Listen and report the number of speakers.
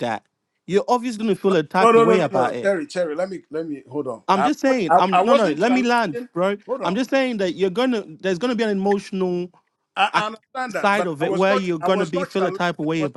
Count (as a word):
two